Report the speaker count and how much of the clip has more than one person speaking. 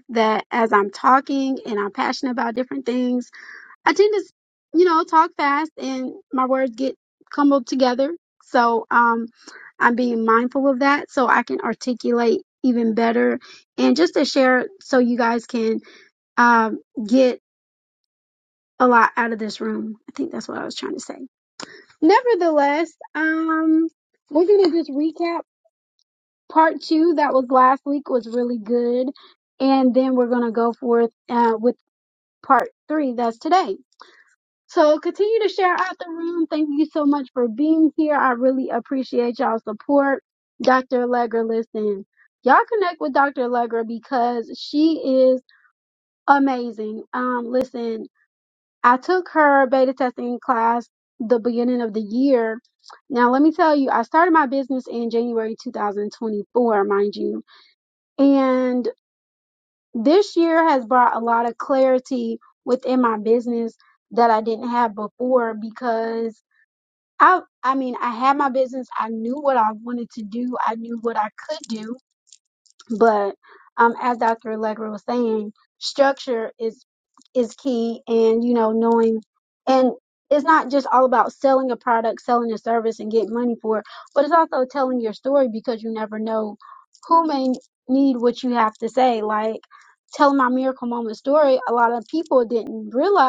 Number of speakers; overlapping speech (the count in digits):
1, no overlap